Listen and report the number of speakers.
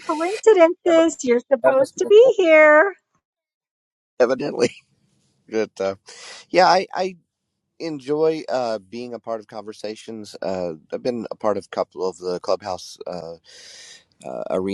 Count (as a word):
two